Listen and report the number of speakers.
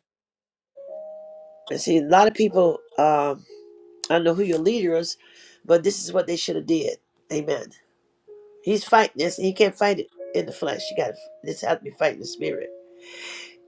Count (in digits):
1